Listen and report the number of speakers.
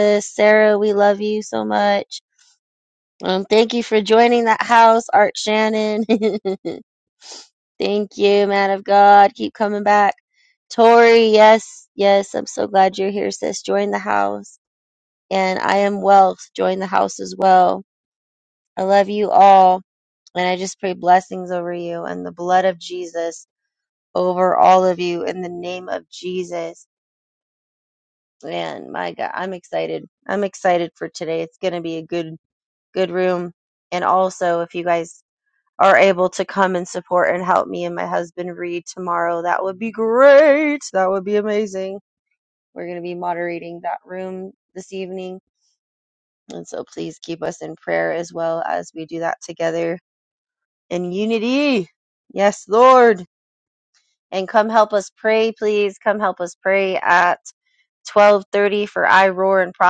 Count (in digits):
1